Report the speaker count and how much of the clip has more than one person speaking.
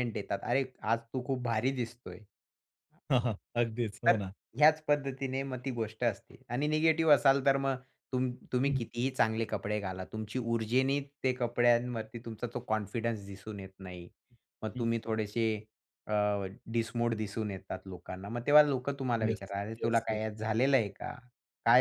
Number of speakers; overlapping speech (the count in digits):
2, about 4%